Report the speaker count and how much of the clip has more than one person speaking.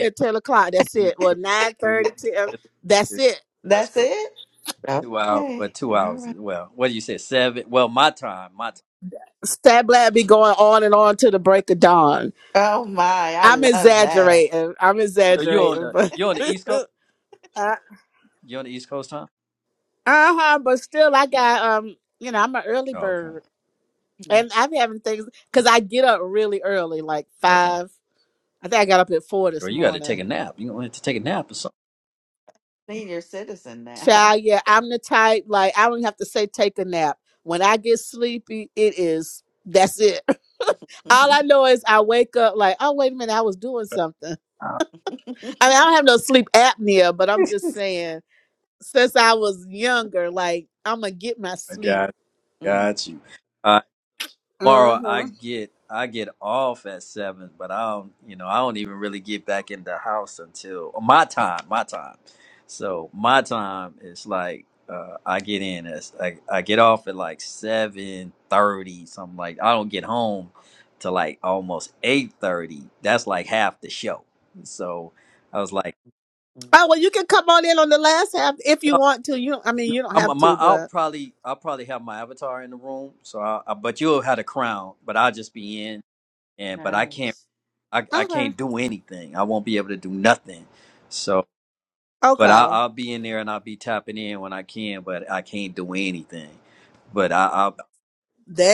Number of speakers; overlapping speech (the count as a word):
three, about 9%